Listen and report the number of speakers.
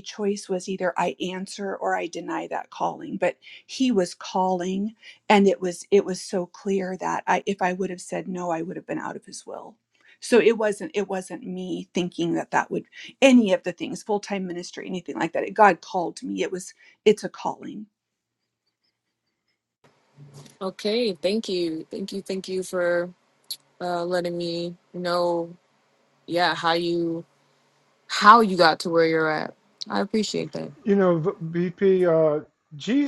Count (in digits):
3